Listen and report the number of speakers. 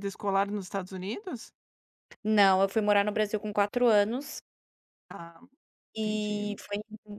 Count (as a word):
two